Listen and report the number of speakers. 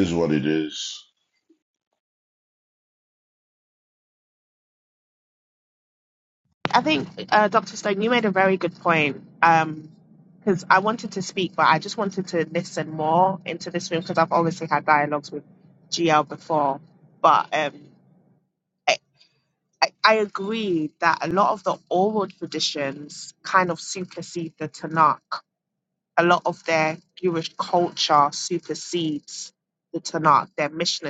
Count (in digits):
2